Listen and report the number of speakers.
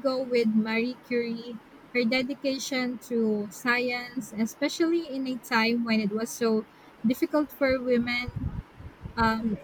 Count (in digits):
1